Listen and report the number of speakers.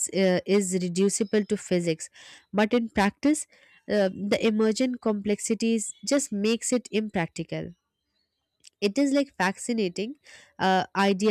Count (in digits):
1